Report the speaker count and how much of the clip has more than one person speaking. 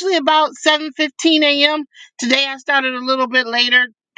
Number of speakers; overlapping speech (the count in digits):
1, no overlap